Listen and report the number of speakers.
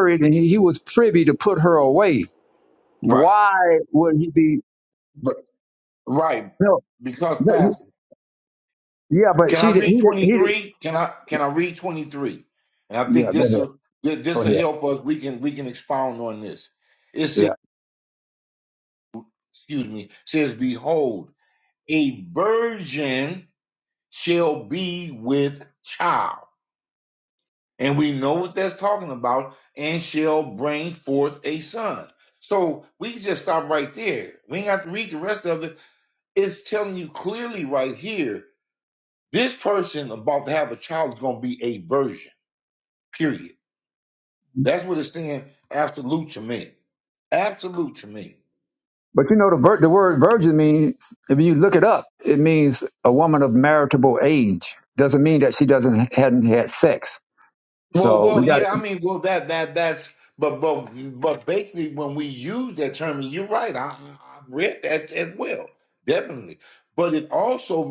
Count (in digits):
2